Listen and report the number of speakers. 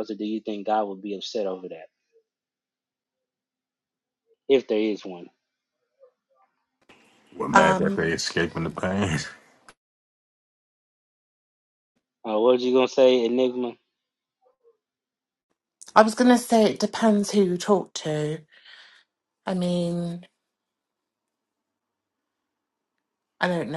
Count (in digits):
3